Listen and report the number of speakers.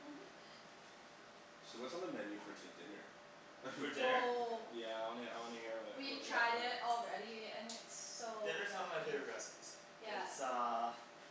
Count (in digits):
4